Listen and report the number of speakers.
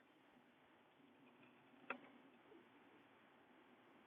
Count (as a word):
zero